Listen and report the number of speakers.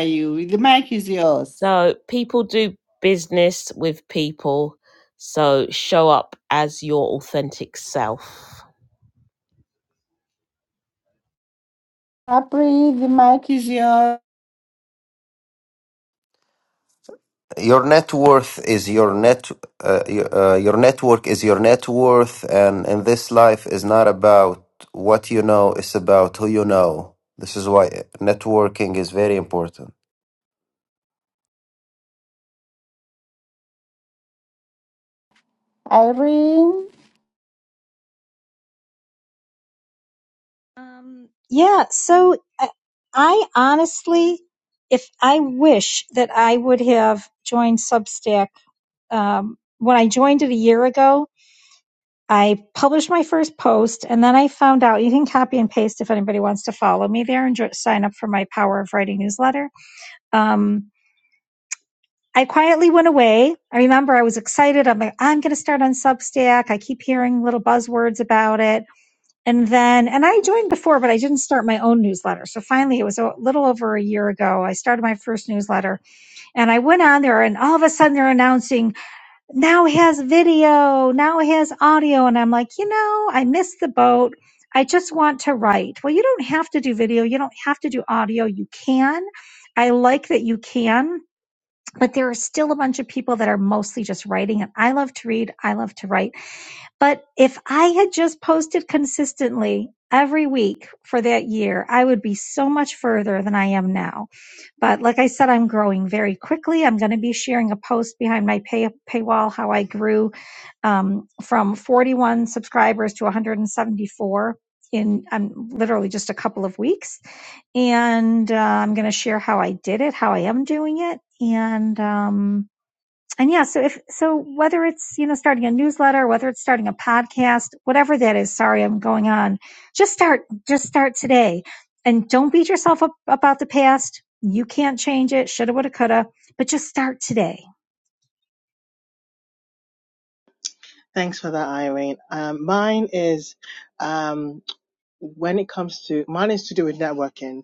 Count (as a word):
five